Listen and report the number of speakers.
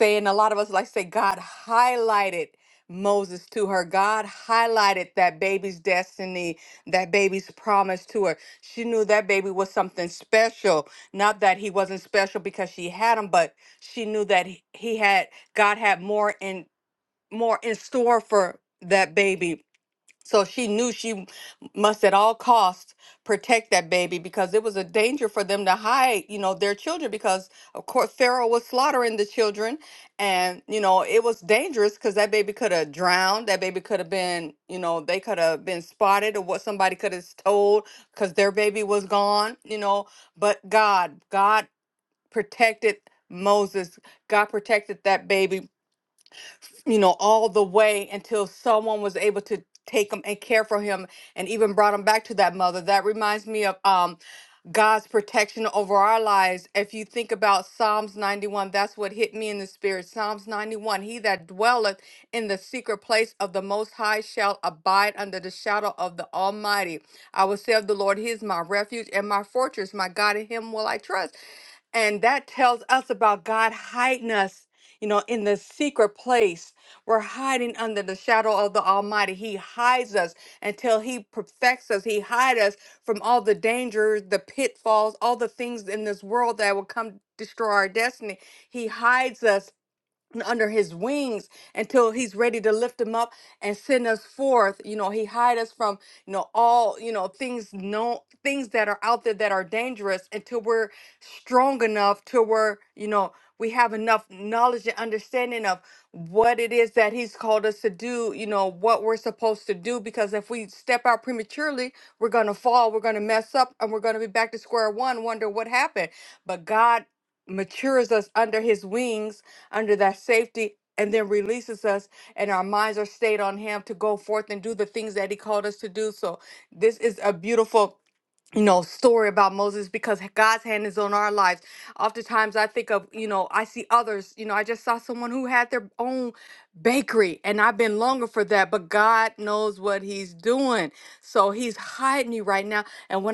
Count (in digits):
1